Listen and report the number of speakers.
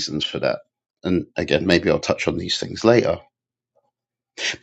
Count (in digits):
1